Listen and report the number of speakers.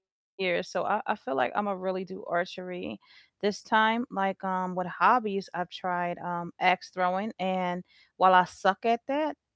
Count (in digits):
1